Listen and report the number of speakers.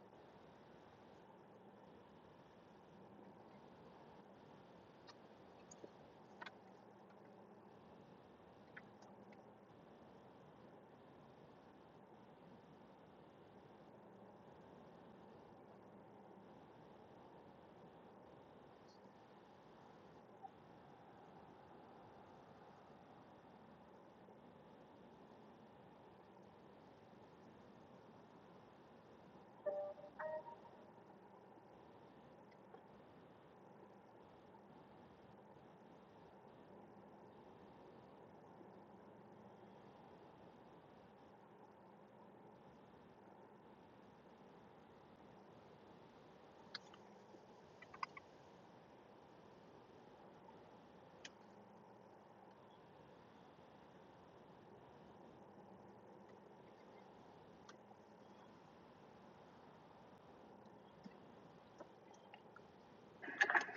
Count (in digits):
0